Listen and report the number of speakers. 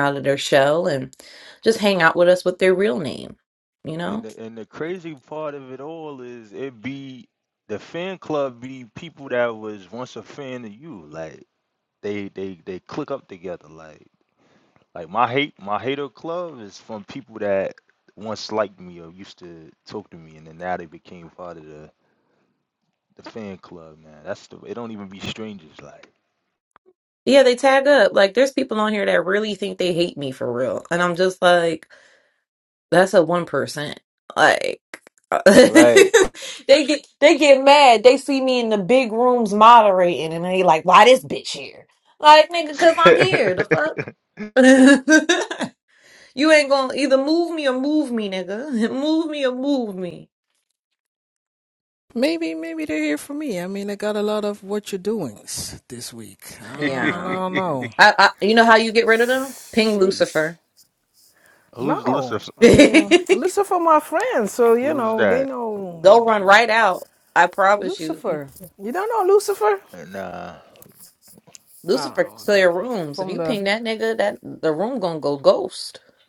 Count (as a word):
three